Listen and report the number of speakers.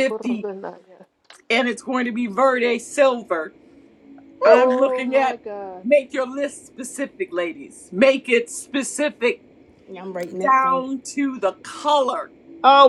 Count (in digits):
3